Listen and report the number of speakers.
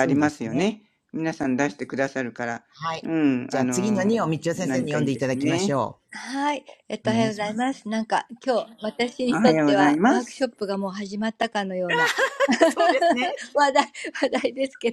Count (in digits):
3